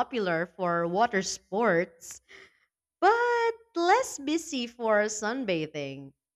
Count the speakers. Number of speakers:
one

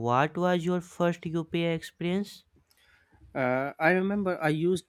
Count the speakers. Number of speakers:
two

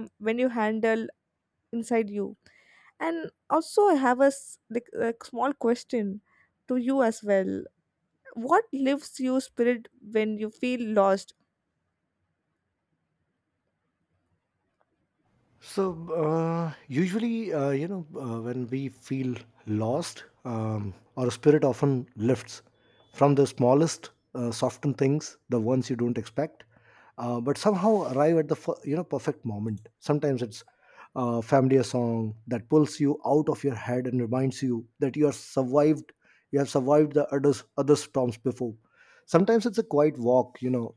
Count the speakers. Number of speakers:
two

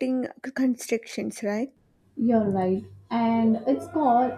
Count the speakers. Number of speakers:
two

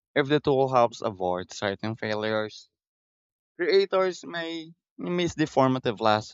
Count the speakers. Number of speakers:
one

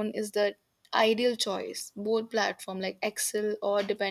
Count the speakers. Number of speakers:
one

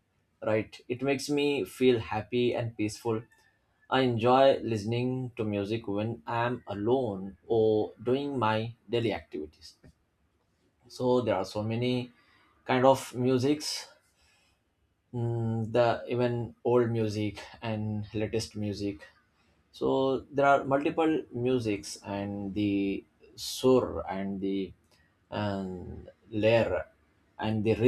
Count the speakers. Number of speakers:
one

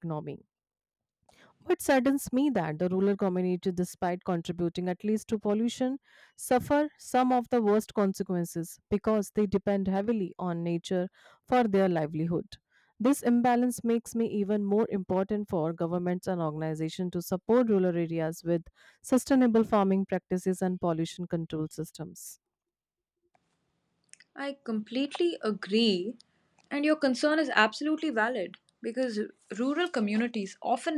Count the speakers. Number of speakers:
two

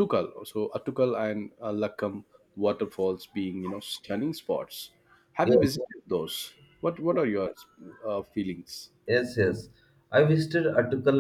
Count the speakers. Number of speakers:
two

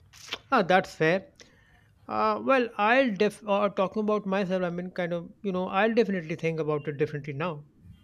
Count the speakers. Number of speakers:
one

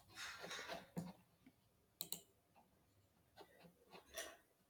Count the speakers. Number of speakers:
zero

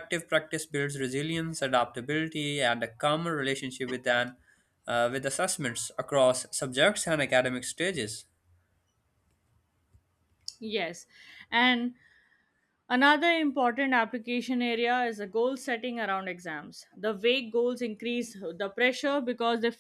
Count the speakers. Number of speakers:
two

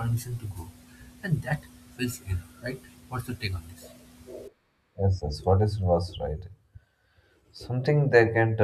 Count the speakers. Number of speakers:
two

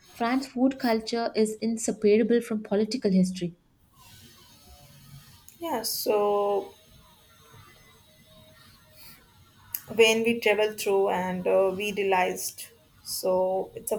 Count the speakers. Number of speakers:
two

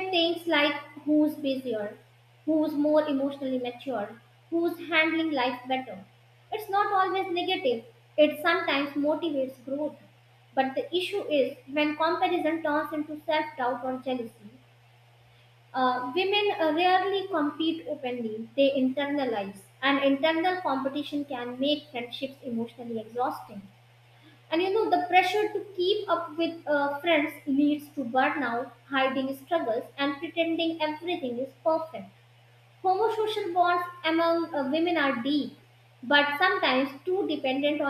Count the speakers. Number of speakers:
one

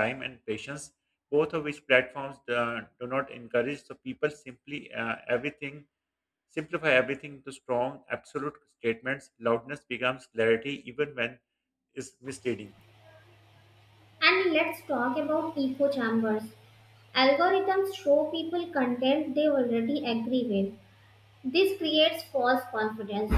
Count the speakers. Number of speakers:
two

